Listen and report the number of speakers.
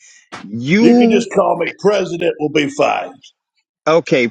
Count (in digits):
2